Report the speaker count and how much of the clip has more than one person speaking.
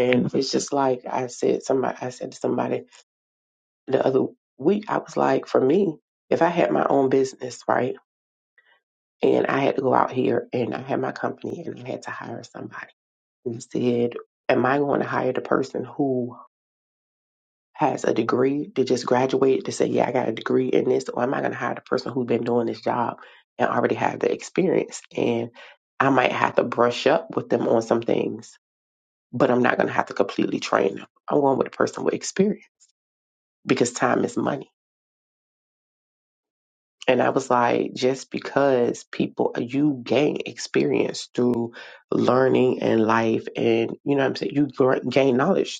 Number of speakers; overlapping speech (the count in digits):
1, no overlap